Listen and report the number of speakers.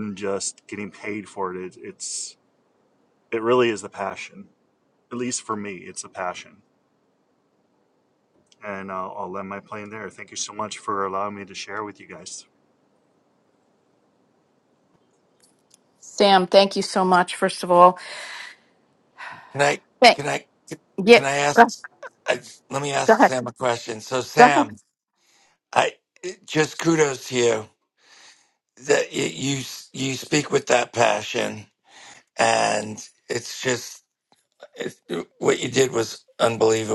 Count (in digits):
3